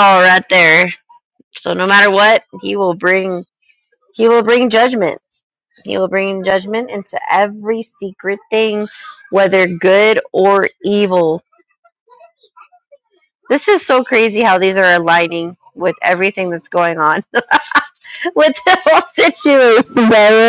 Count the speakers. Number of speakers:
1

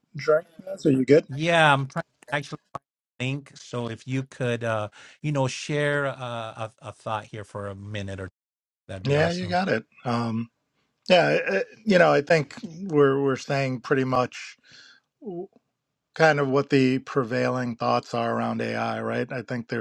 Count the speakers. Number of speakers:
2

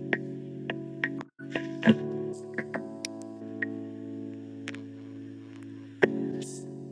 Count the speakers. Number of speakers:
0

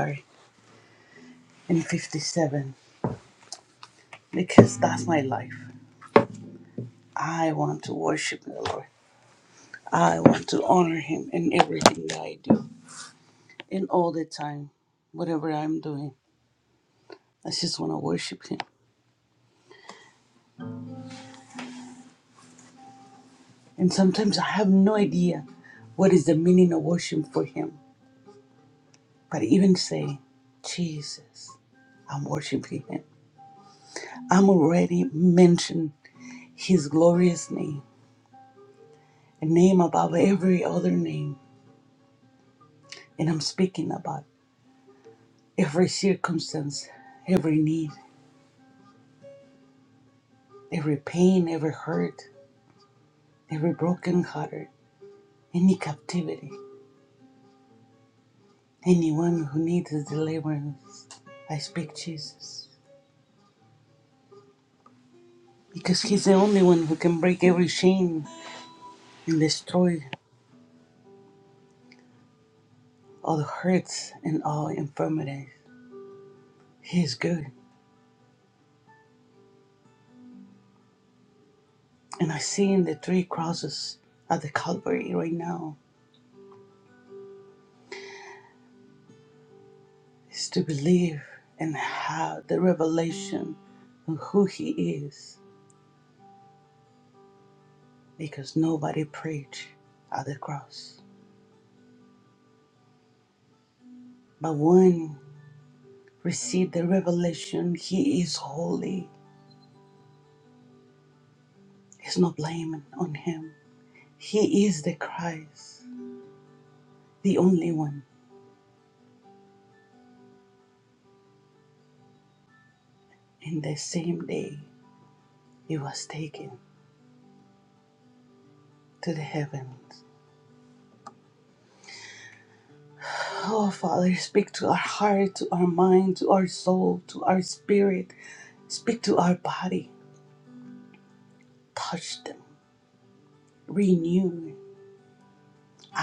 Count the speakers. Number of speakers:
1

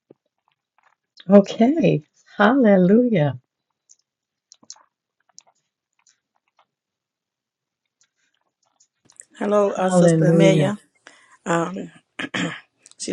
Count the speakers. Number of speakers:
2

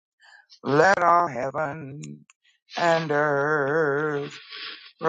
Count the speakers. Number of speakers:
1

